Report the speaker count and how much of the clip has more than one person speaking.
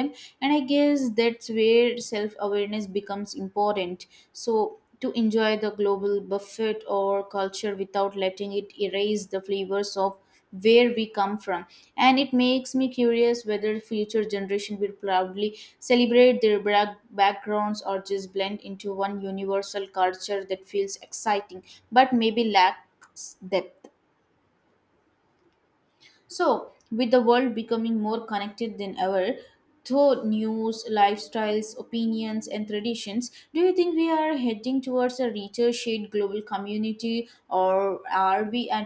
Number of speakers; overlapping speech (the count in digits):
1, no overlap